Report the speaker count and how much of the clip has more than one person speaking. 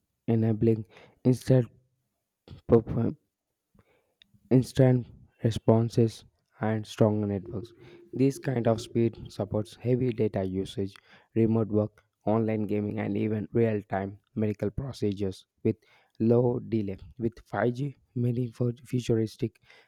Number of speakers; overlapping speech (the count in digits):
1, no overlap